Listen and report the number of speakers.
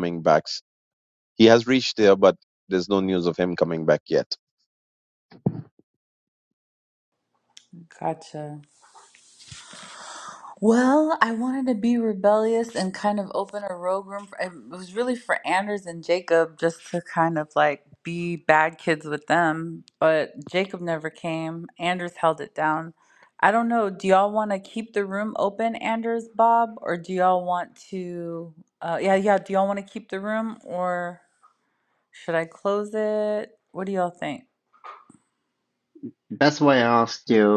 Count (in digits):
3